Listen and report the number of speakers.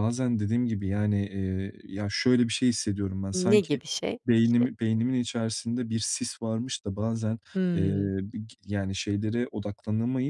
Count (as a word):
two